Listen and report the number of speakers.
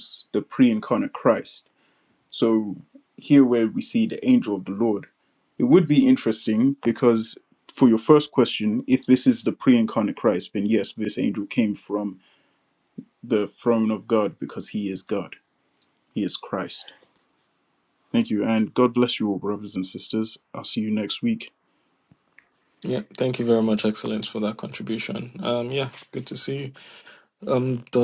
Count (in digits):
2